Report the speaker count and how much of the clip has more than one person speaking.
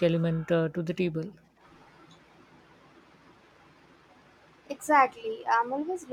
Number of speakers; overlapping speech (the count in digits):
2, no overlap